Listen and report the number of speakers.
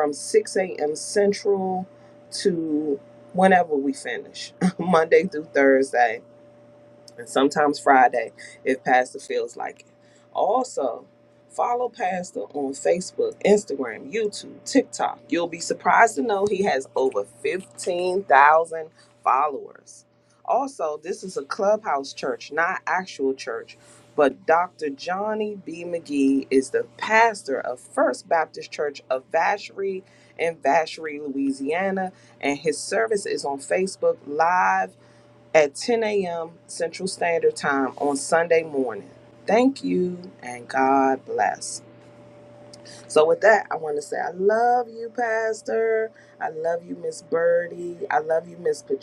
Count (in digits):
1